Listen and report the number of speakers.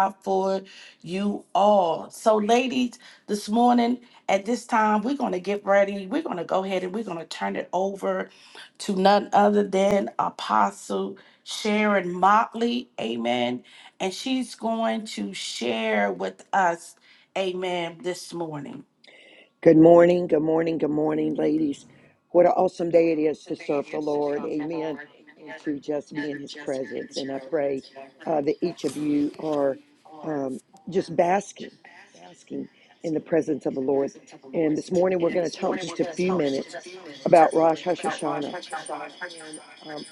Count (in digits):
2